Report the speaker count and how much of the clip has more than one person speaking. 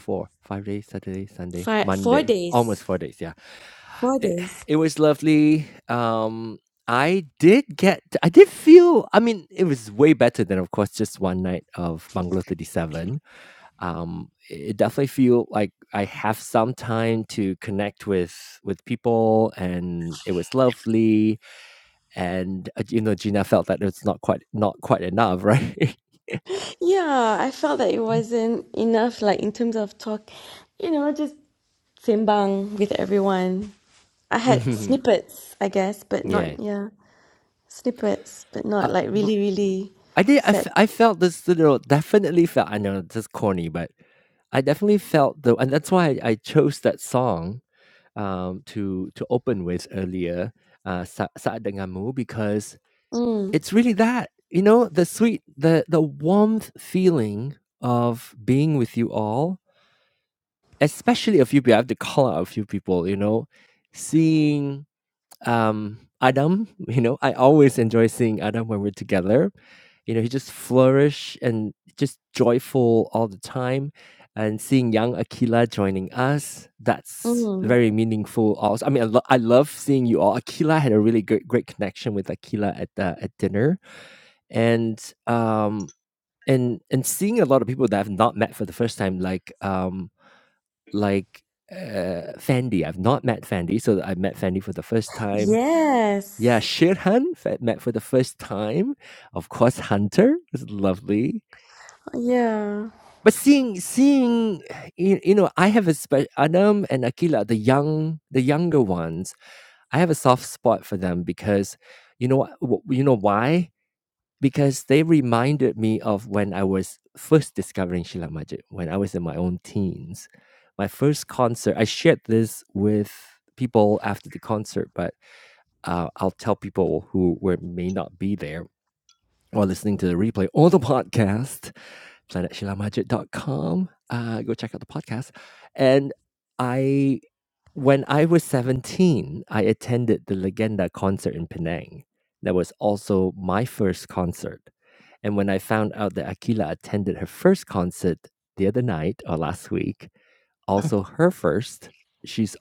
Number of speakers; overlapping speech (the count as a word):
two, about 2%